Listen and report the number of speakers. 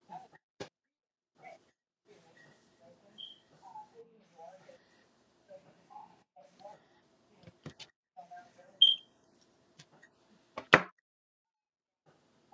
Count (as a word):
zero